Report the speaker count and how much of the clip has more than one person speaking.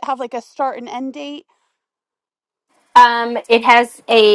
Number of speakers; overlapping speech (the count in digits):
2, no overlap